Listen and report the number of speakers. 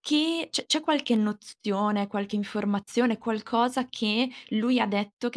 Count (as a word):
one